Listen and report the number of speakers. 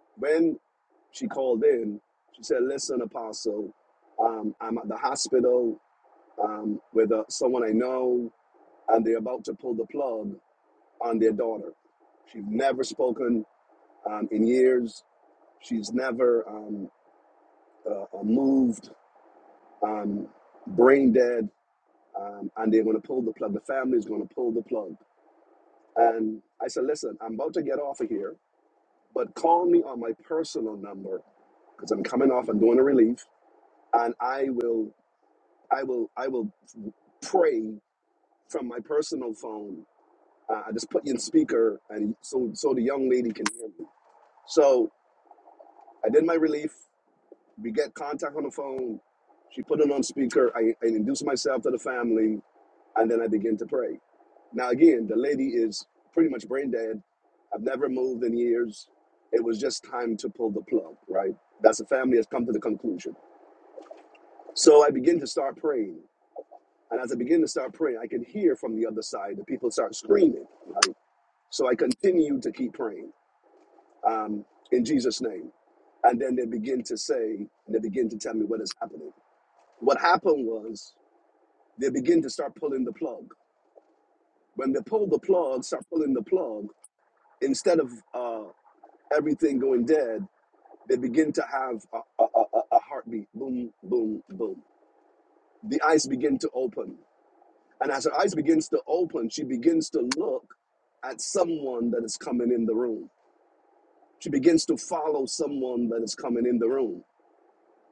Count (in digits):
1